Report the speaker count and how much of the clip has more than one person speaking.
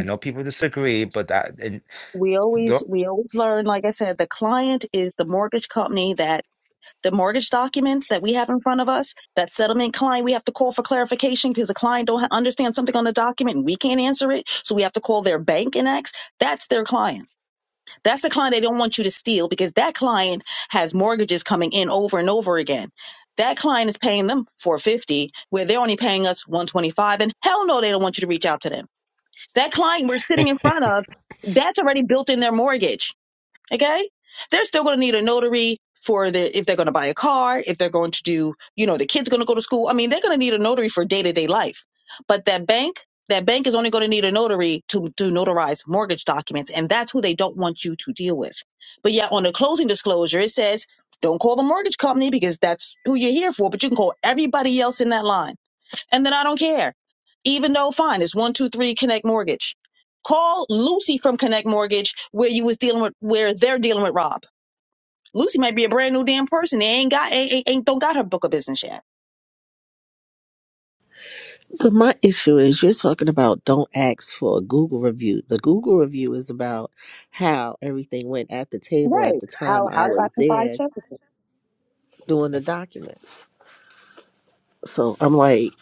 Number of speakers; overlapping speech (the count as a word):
three, about 2%